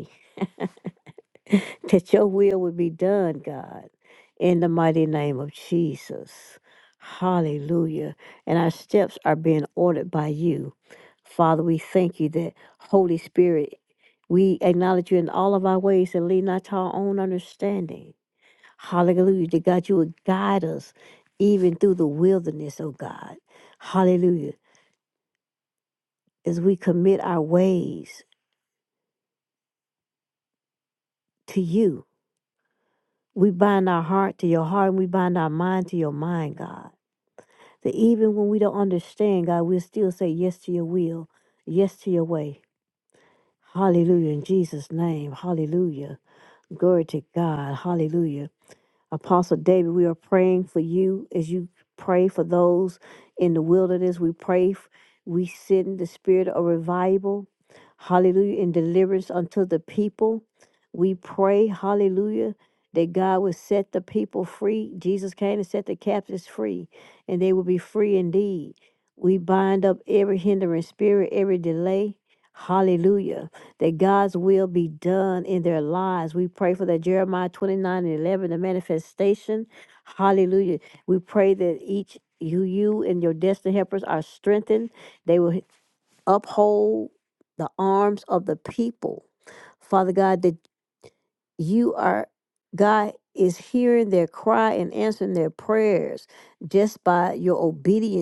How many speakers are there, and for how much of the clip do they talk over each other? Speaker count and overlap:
one, no overlap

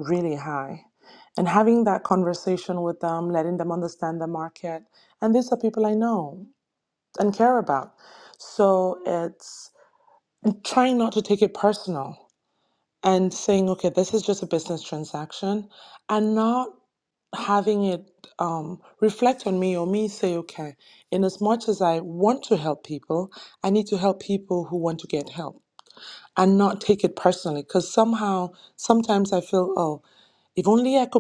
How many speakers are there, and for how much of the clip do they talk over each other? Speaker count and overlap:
one, no overlap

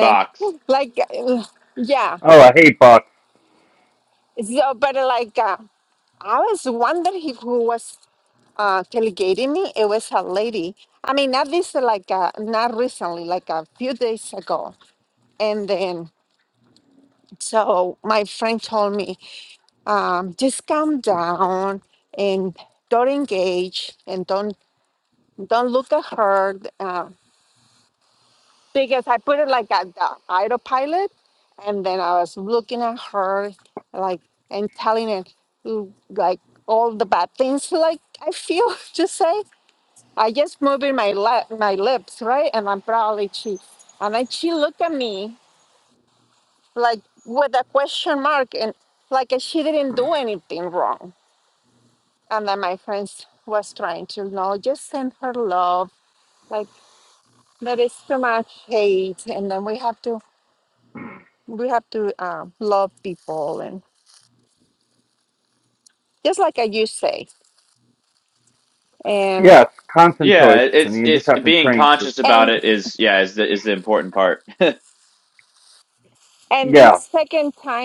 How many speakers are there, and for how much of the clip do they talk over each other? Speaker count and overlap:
three, about 4%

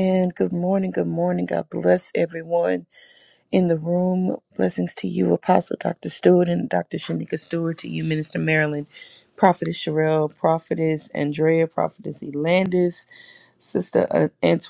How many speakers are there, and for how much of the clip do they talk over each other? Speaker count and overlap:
one, no overlap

